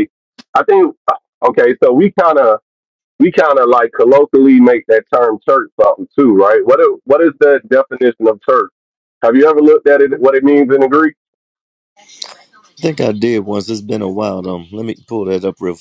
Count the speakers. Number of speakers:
2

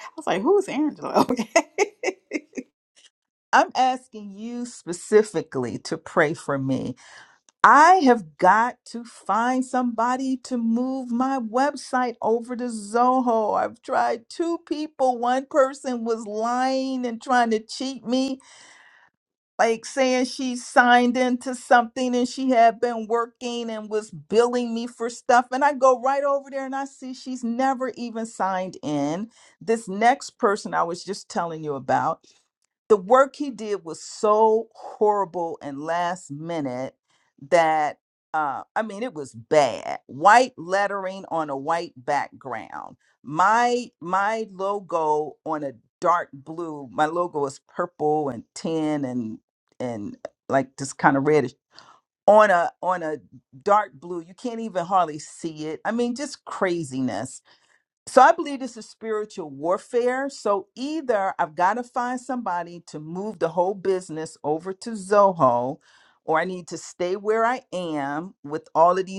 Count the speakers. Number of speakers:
2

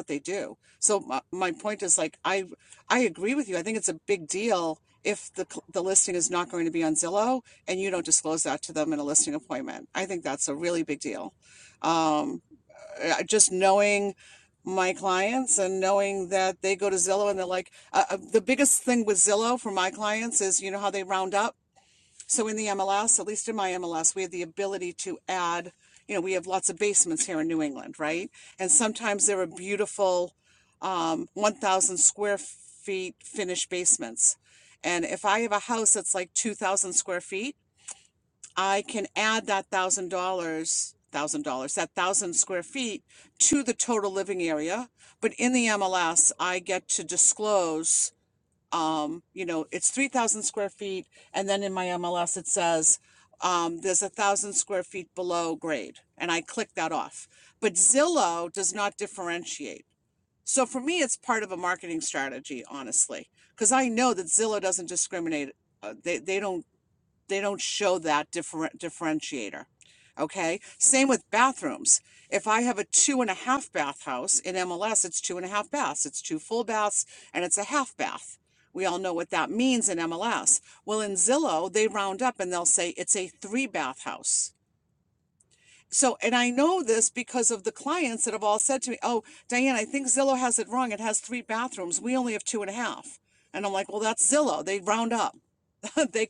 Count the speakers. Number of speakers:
1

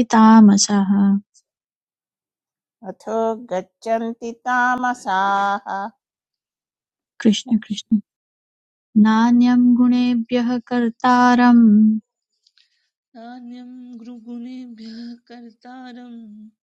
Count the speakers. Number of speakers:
3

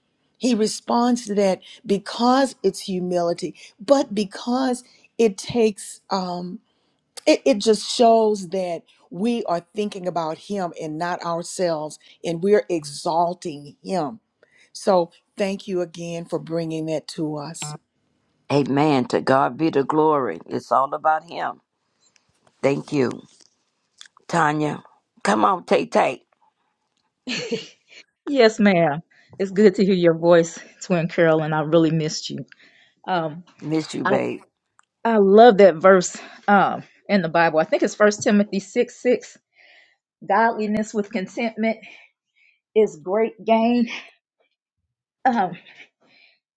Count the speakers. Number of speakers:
3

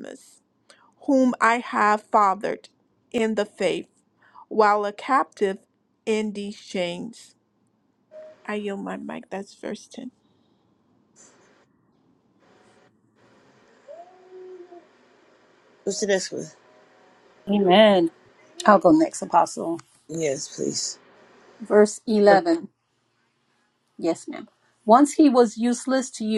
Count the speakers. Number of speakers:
3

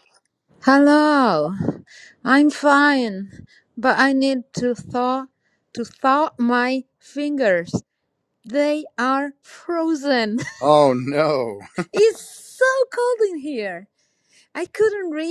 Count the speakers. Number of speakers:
2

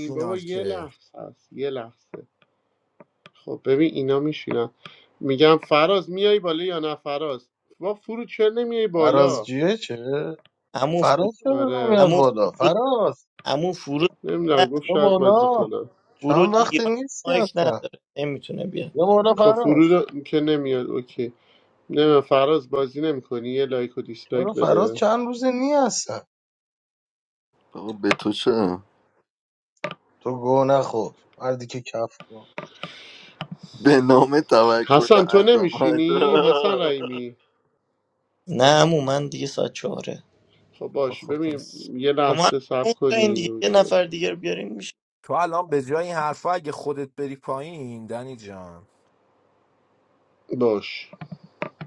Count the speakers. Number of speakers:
5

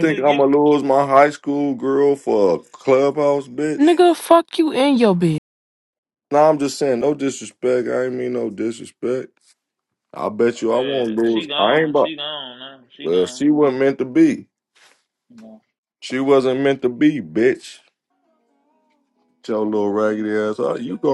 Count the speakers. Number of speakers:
3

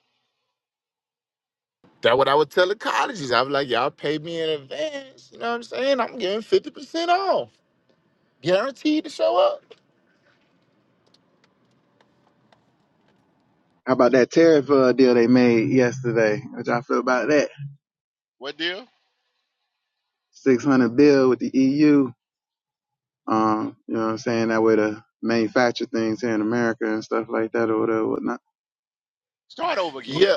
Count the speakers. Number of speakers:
3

